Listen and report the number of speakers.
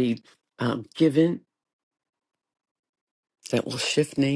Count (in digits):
1